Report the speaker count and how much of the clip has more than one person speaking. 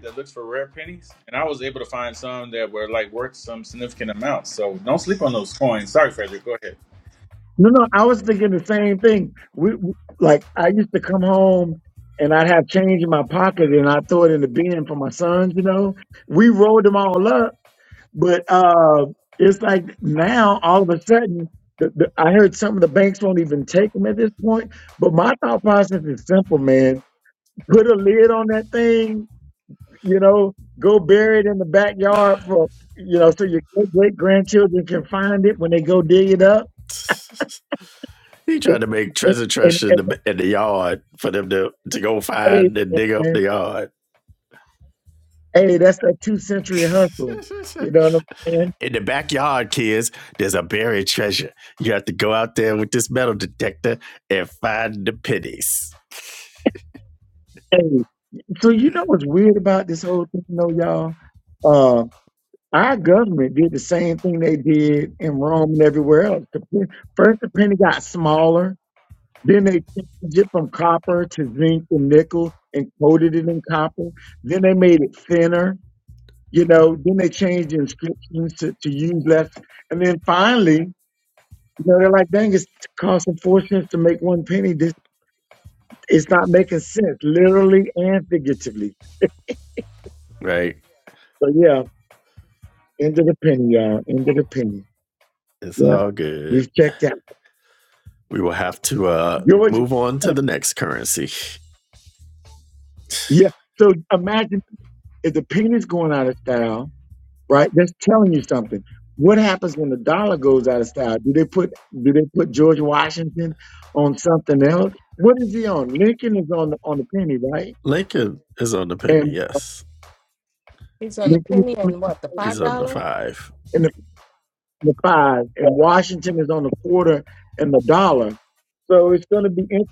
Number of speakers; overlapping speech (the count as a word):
four, about 3%